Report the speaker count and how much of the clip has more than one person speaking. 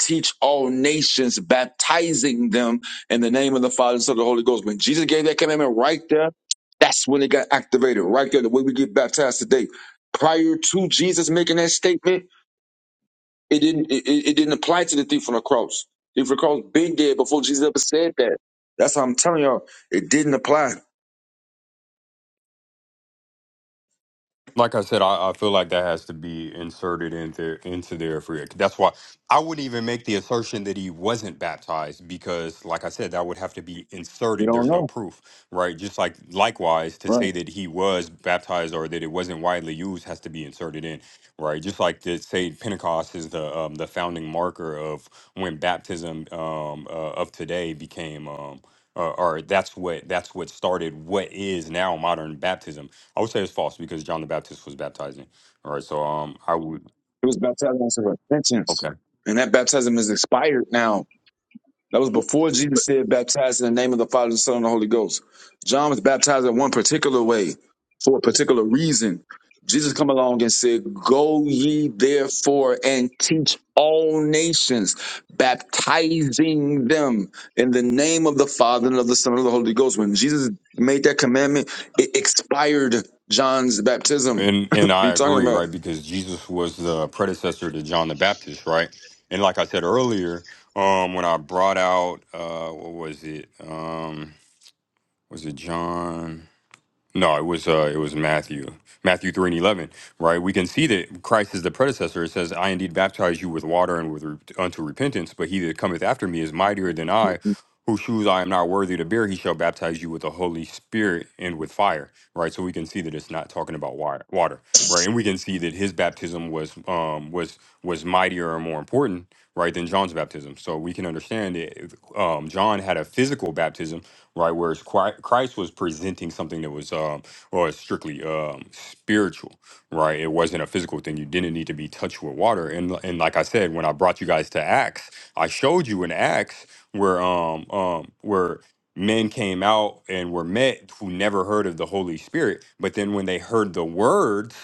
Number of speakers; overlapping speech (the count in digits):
2, about 2%